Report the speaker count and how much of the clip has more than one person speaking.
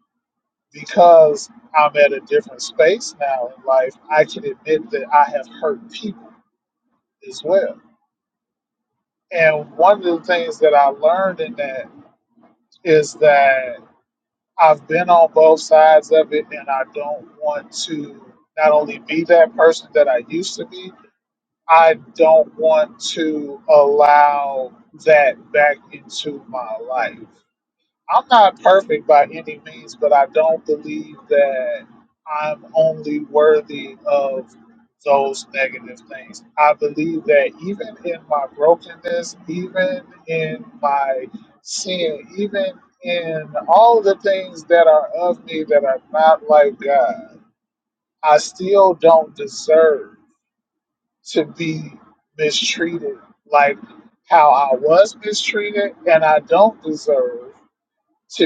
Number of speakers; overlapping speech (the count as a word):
one, no overlap